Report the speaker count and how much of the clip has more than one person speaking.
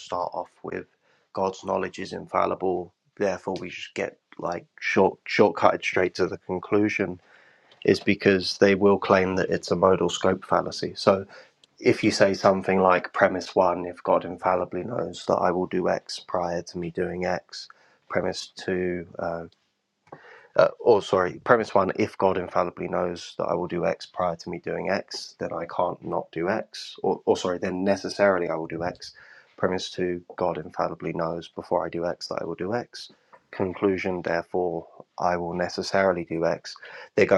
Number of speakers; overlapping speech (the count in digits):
1, no overlap